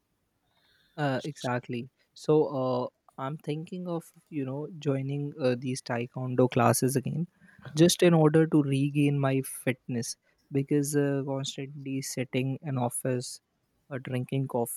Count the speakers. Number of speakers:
1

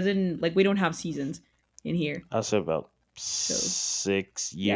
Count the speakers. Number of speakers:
2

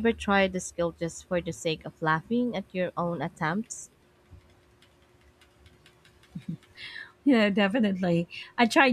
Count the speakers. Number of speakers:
2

